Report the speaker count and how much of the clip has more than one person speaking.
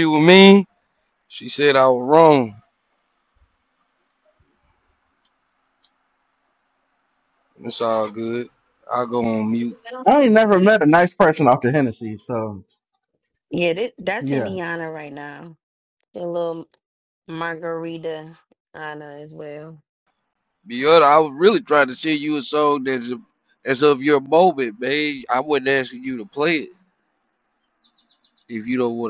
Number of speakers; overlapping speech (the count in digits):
3, about 1%